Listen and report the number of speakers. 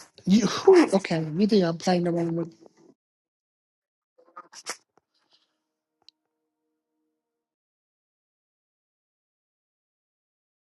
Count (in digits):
1